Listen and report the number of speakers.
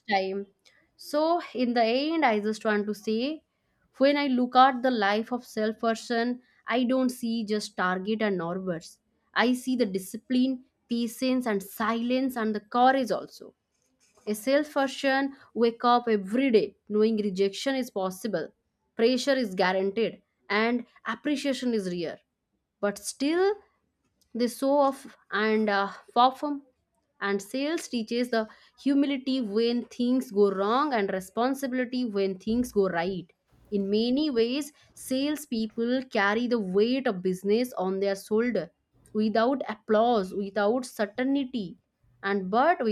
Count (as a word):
one